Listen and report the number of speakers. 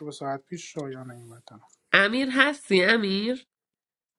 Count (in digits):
2